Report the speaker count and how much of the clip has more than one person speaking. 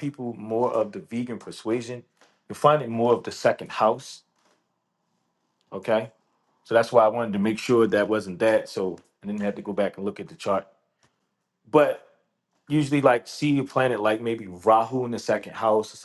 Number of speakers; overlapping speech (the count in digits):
1, no overlap